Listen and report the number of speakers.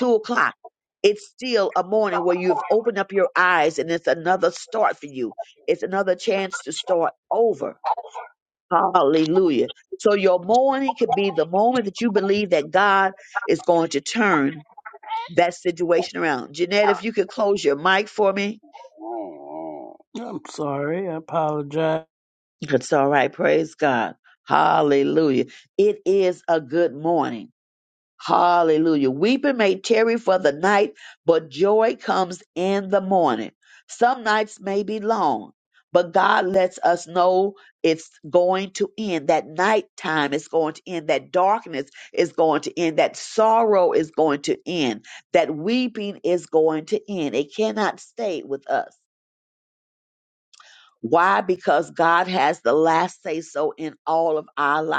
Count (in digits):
2